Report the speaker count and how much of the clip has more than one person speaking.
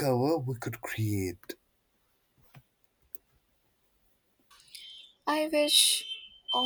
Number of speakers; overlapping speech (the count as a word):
two, no overlap